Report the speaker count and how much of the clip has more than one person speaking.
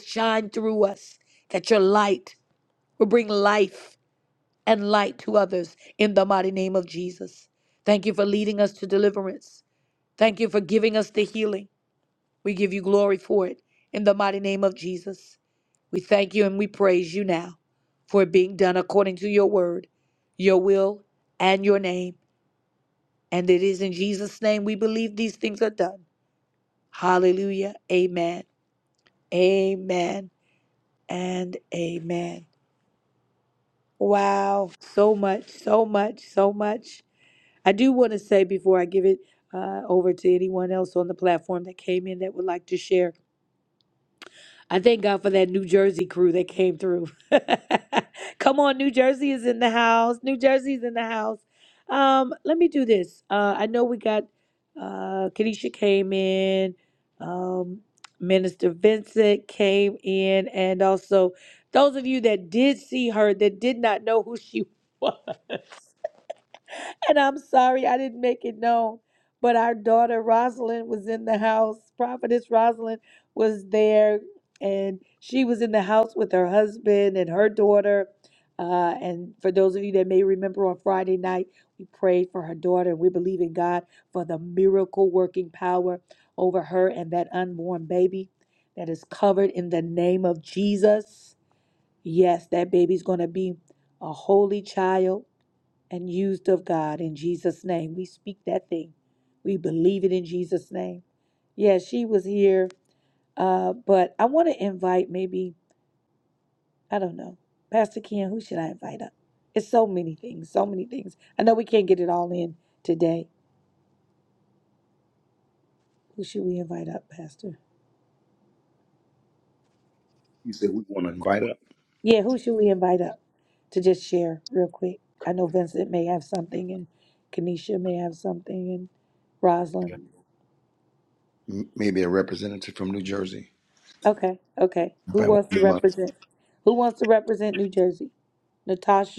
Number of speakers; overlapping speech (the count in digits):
2, about 1%